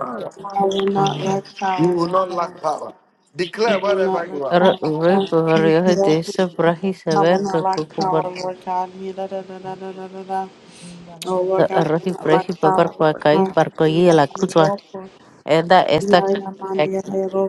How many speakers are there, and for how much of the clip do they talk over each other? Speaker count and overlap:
3, about 40%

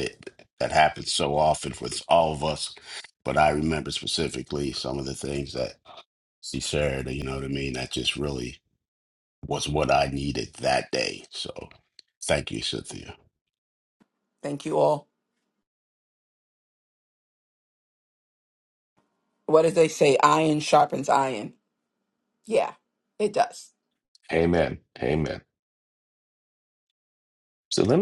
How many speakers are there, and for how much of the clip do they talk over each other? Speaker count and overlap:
3, no overlap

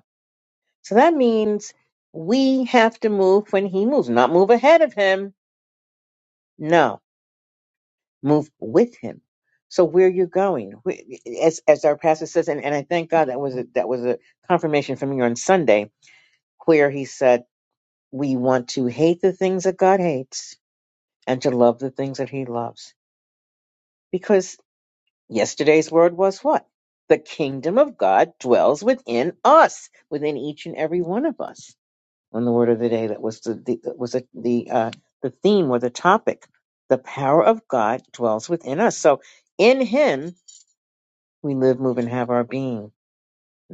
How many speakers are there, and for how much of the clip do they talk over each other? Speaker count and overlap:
1, no overlap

